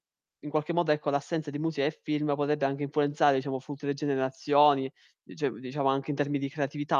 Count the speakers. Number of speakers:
one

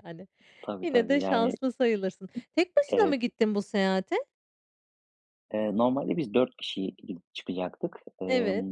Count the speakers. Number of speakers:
two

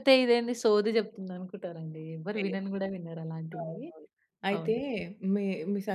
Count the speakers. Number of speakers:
two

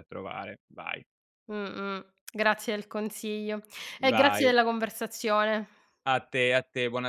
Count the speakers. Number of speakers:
two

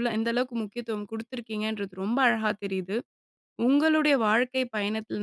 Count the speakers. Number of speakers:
one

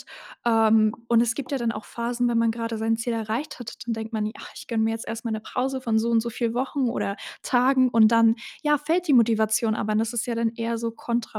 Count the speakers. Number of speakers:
one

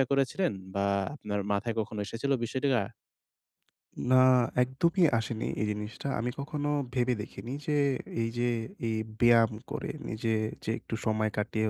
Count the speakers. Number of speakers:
two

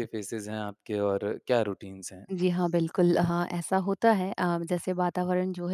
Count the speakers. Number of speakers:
two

